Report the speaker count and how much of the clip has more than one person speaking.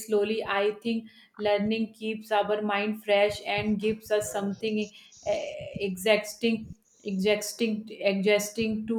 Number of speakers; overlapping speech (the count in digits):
1, no overlap